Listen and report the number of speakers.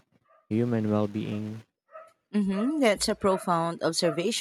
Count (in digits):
2